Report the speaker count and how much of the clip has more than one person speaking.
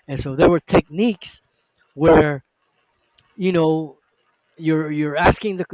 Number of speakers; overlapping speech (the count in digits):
1, no overlap